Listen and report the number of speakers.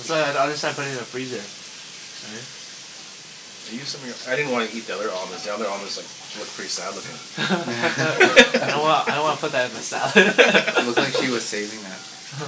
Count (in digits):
3